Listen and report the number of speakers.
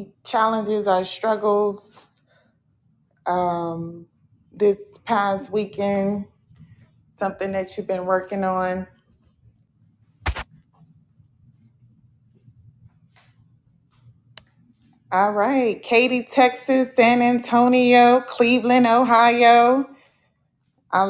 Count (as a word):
one